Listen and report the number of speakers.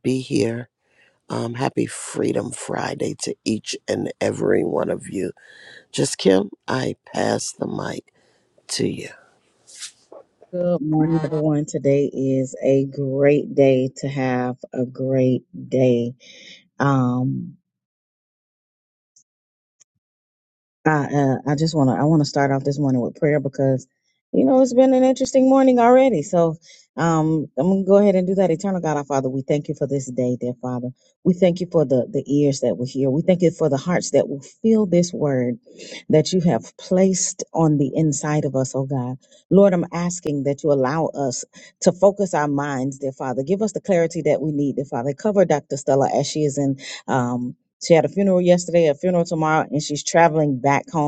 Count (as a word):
two